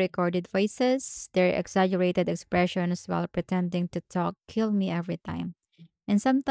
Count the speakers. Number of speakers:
1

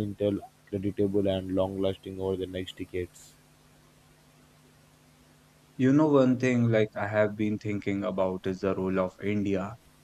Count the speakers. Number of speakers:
2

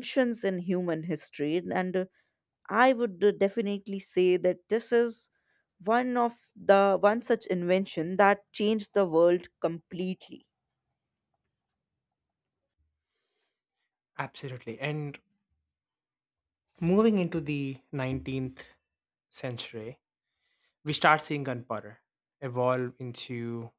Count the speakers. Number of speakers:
2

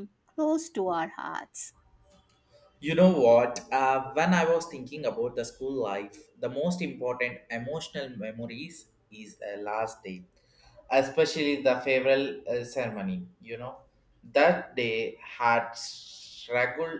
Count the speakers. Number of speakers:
2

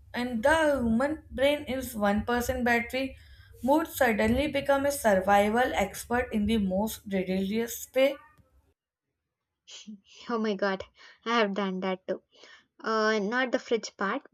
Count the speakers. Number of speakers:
2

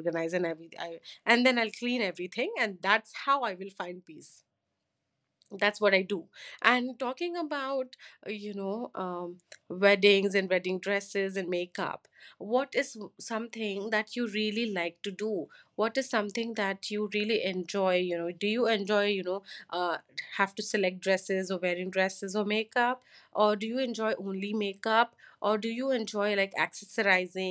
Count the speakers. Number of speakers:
1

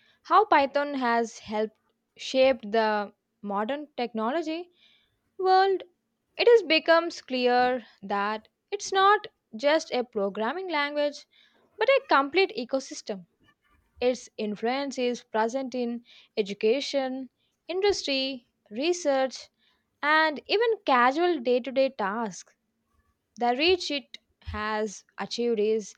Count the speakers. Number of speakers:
1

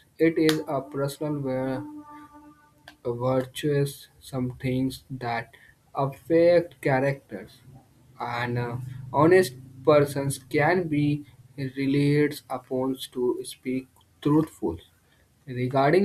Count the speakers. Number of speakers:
1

